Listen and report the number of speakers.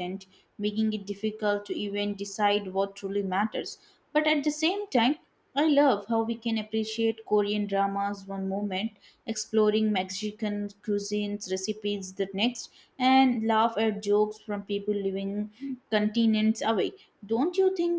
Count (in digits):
1